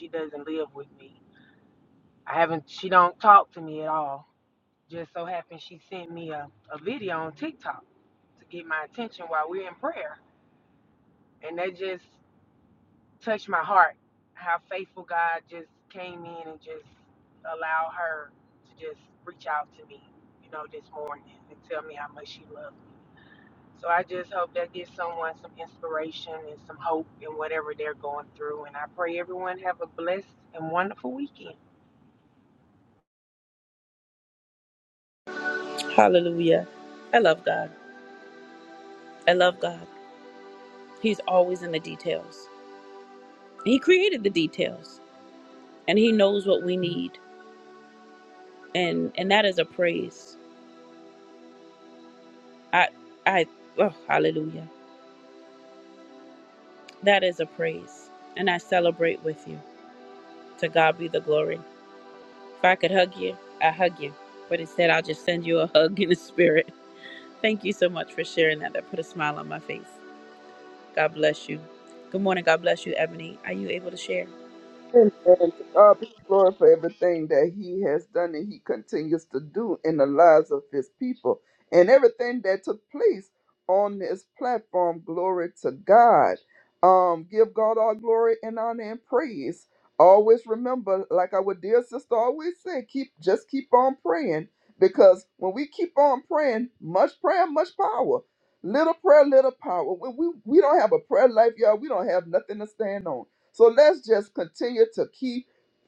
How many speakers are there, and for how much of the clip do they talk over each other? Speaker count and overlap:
3, no overlap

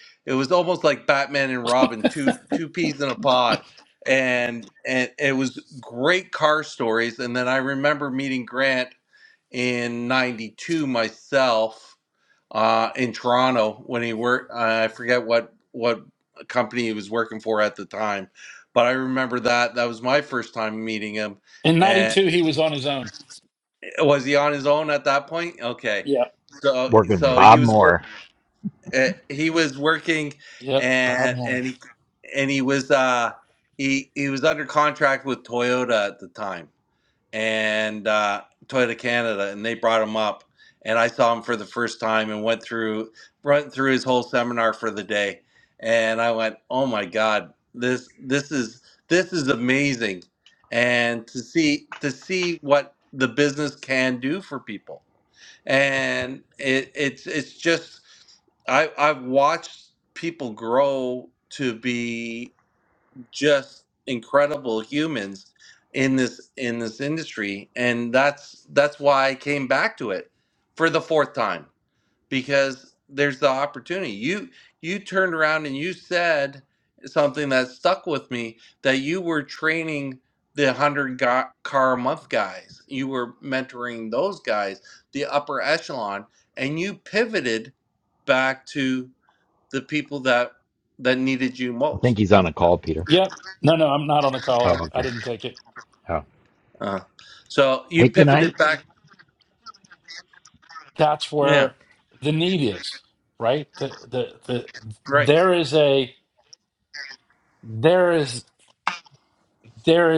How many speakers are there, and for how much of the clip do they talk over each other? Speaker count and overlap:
3, about 3%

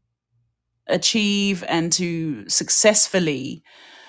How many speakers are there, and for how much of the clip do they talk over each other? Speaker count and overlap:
1, no overlap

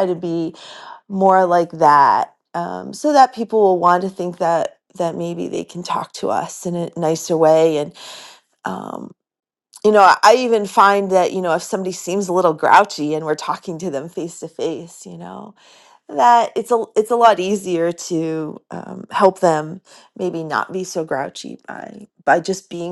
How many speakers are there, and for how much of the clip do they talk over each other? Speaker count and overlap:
1, no overlap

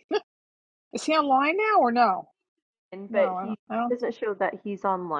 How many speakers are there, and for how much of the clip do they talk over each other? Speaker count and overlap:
2, about 10%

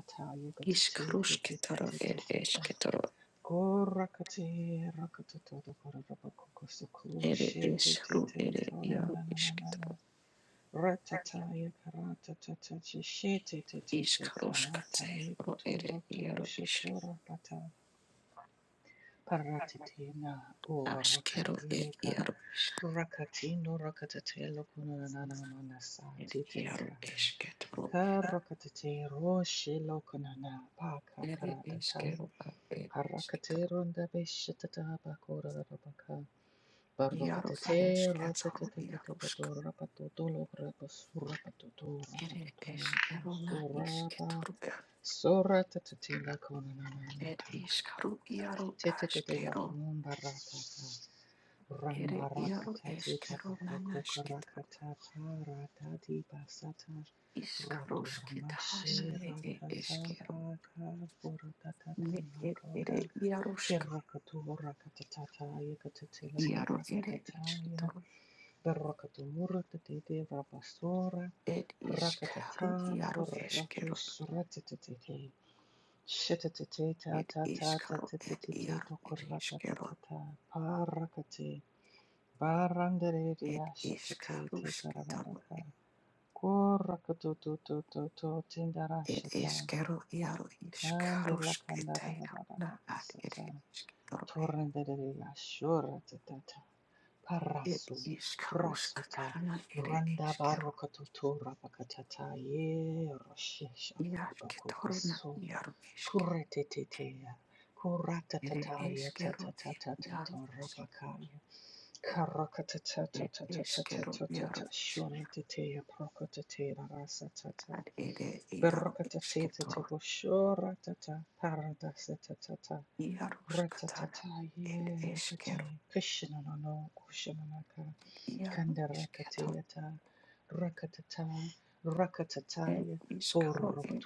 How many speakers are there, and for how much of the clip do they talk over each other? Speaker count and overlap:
2, about 31%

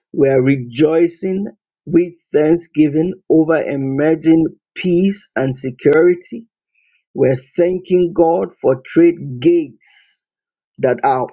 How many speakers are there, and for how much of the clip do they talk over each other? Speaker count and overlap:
1, no overlap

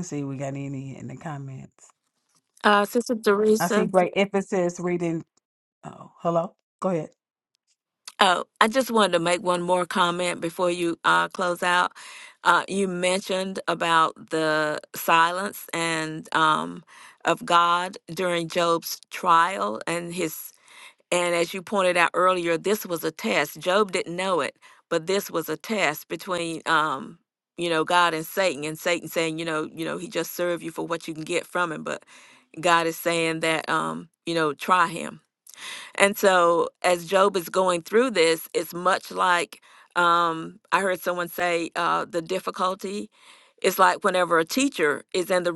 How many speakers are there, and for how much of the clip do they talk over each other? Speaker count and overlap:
2, about 1%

